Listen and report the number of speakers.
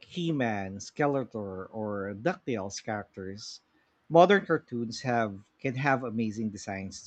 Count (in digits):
1